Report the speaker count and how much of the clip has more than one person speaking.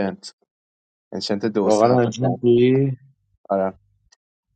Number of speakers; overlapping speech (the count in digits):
2, about 16%